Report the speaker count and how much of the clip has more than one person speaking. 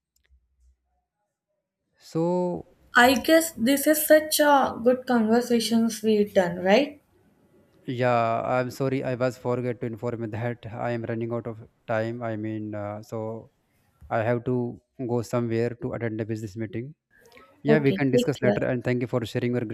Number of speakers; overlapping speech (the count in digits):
2, about 5%